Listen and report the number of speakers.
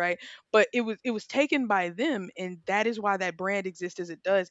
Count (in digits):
1